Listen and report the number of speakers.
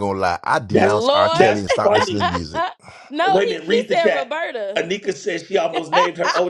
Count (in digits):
3